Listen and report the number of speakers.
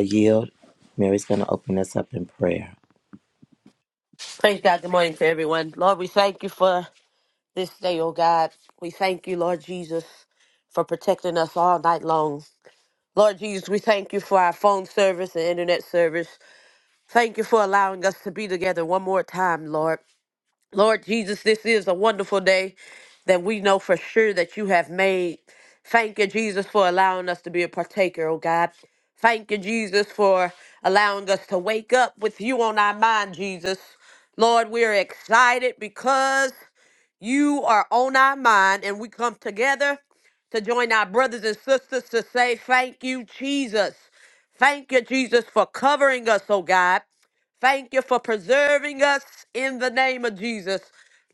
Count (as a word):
two